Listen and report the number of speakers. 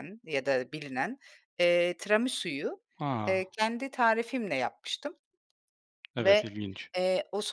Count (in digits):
2